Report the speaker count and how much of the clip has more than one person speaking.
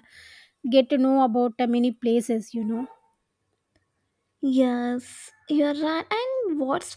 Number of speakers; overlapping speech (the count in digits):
2, no overlap